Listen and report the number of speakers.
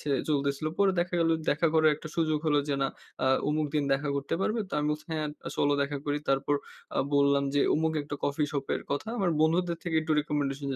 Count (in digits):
1